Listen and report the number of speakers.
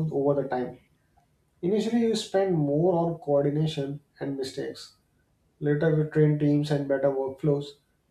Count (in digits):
1